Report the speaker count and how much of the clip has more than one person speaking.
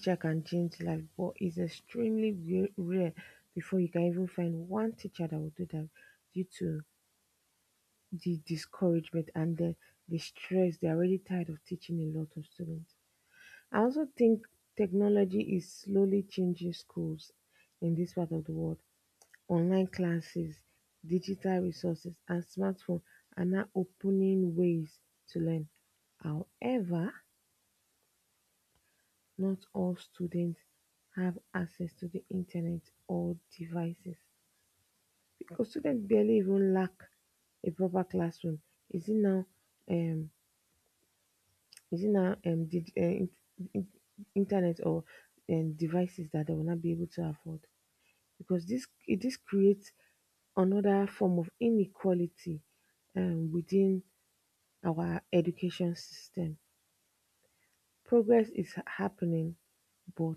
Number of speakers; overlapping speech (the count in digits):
1, no overlap